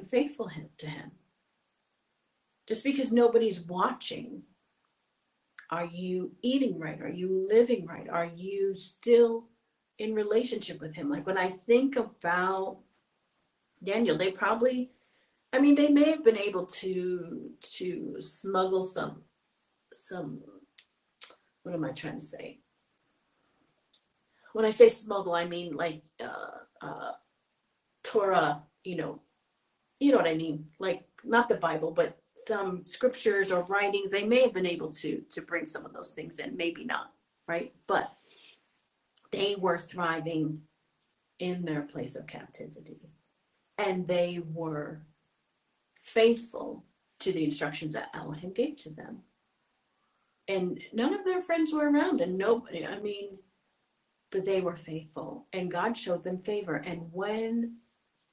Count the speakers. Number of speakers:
1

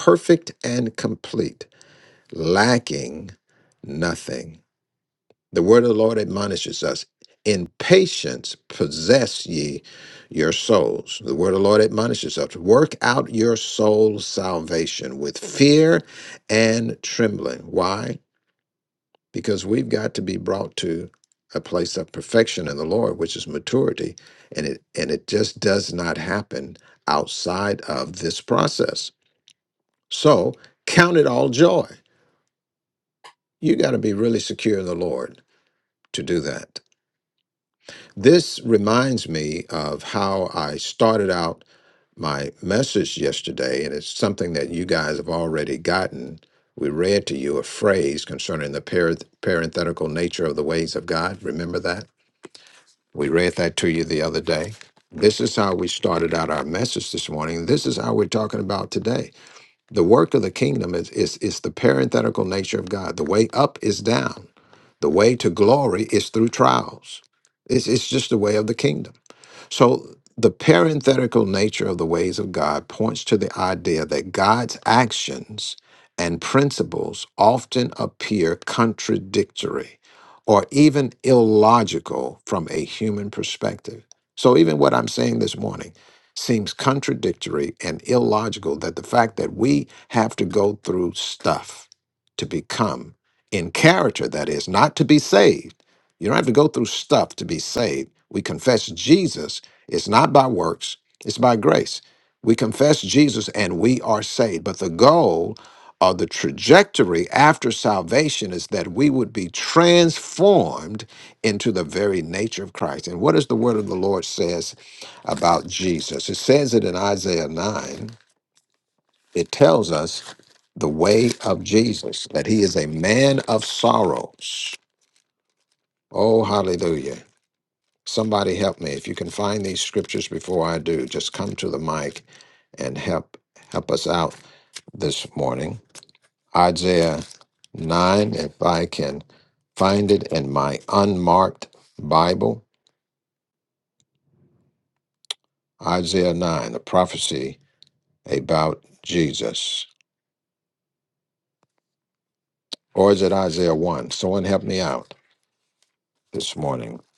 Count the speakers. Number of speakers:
1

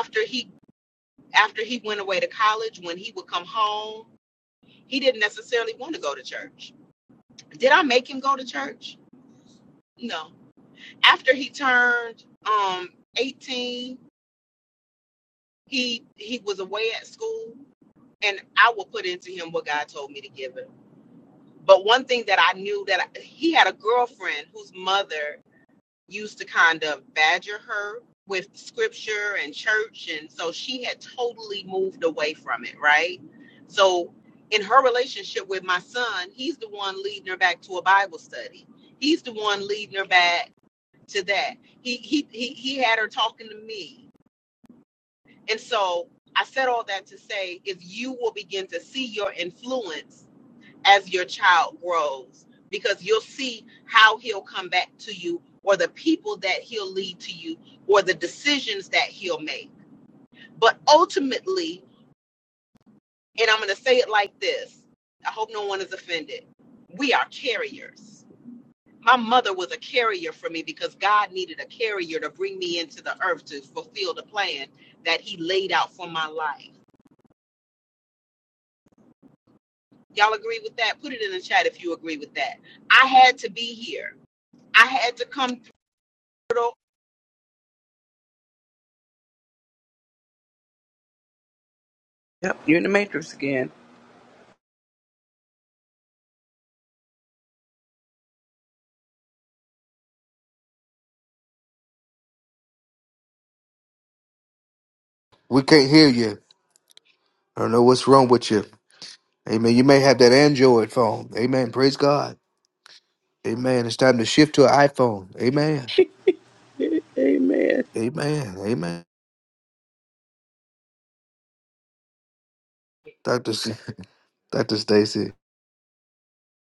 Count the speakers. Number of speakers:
3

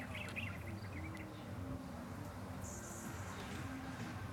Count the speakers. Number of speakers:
0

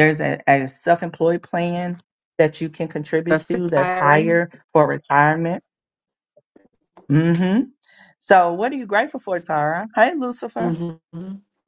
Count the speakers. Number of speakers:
2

